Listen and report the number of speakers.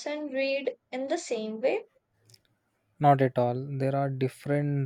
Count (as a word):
two